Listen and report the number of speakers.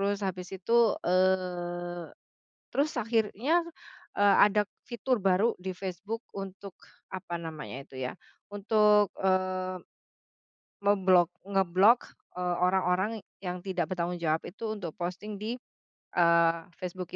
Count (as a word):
one